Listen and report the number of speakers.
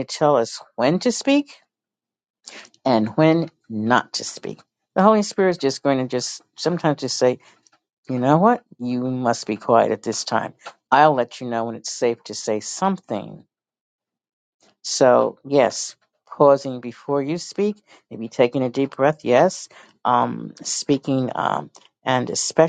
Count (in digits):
1